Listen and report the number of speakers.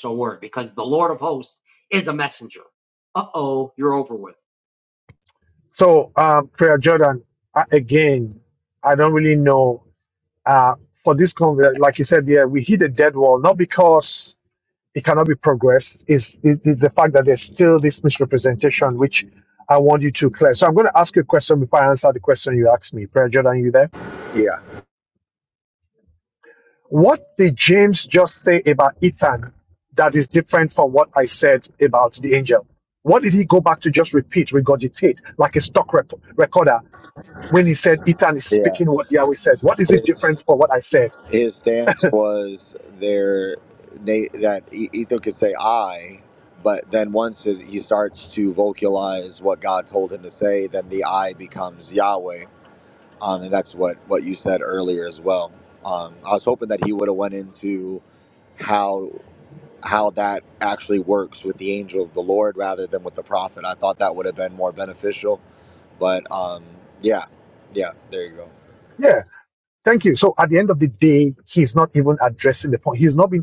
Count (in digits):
3